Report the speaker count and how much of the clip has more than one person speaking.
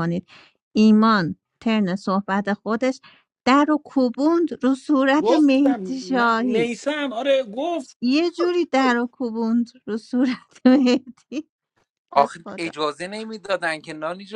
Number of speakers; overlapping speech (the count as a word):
three, about 11%